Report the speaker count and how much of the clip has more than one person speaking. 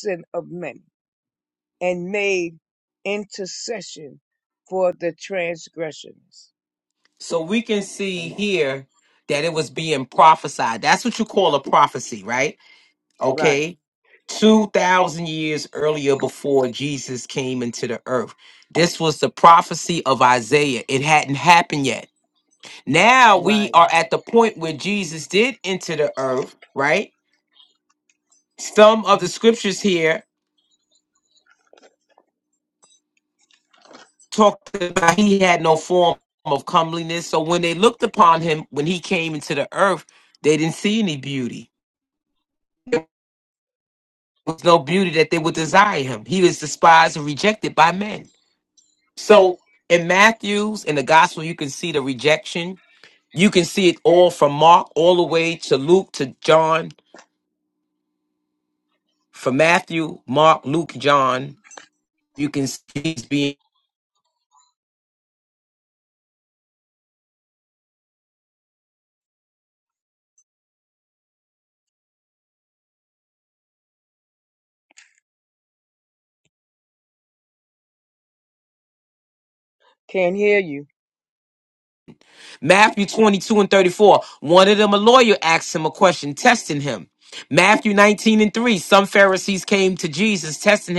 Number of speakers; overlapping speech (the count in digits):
2, about 1%